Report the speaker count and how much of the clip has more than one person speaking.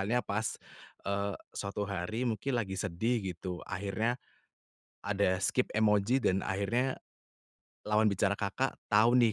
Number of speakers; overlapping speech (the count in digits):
1, no overlap